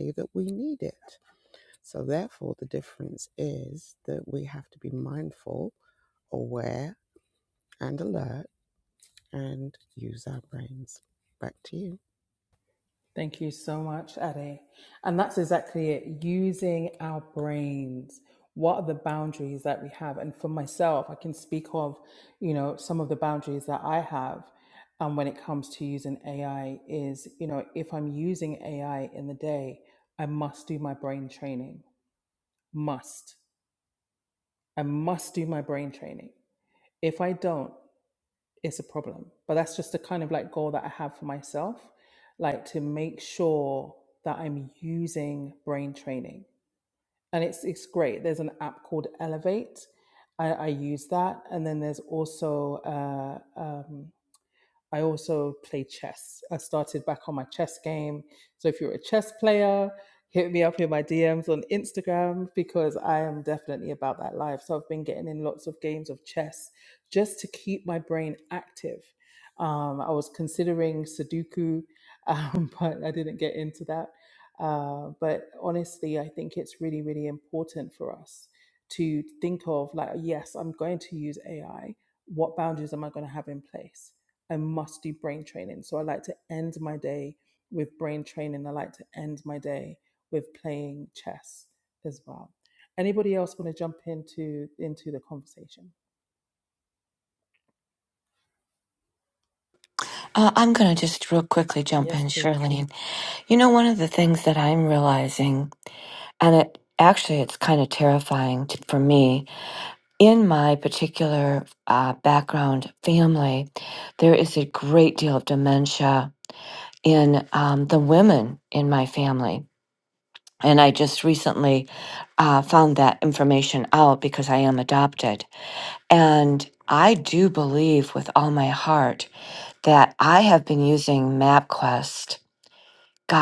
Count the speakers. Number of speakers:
three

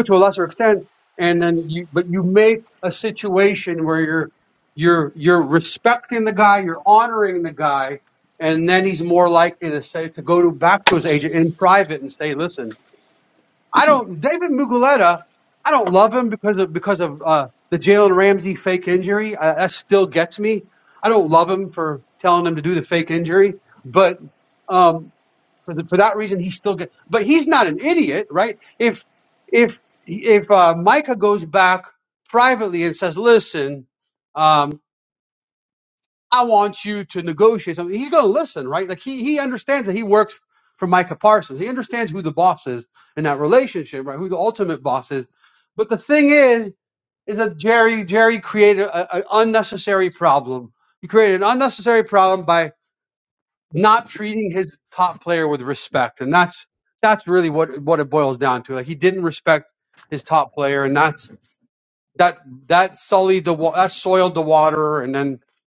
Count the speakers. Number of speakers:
one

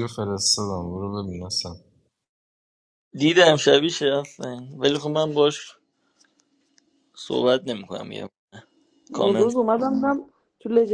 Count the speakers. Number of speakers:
three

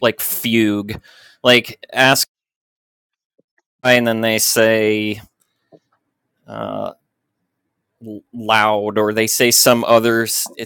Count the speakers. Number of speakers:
one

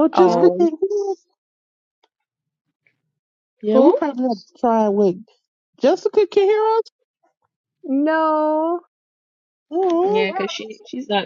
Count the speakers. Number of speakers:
three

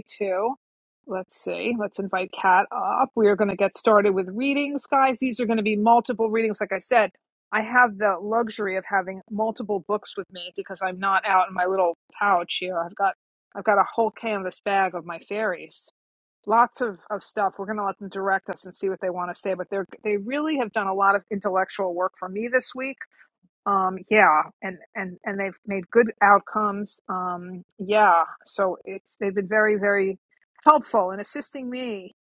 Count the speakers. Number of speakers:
one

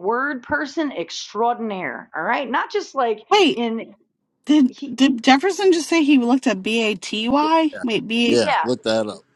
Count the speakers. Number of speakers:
three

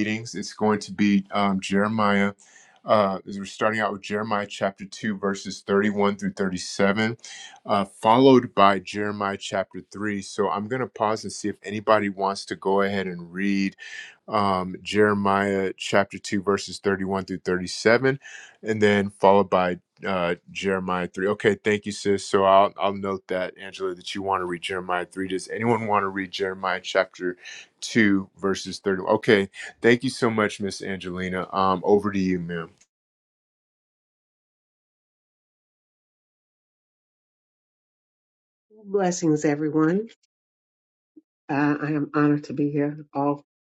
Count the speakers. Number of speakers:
two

